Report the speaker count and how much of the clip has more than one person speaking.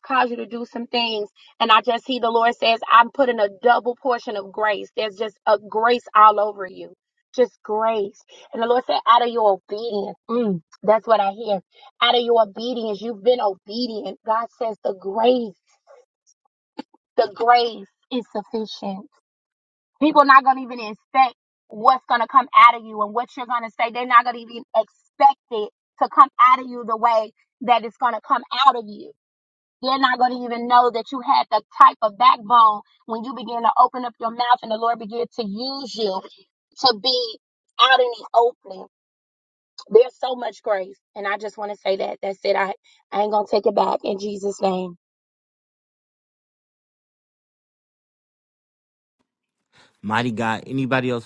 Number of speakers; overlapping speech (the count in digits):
2, no overlap